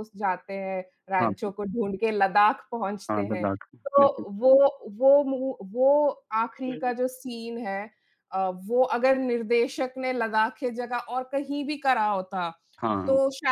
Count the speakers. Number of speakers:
2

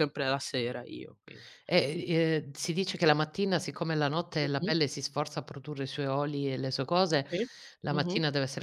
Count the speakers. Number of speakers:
2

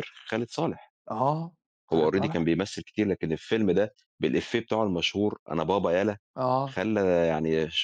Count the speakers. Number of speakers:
2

